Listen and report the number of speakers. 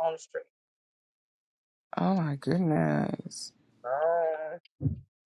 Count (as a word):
two